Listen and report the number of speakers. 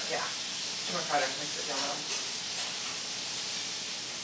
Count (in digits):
1